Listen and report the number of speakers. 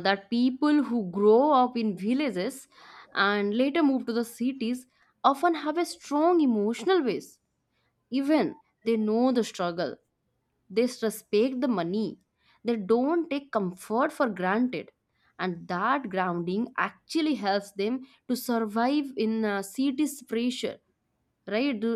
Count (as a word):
one